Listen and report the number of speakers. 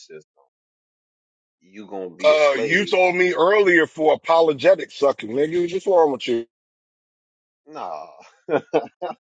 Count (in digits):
2